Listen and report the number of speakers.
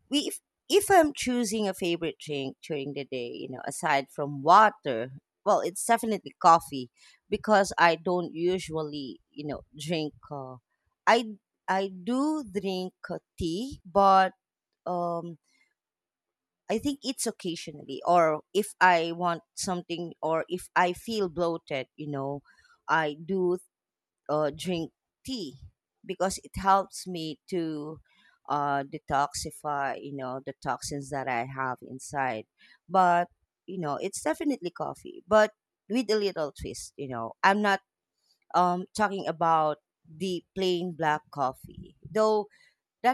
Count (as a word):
one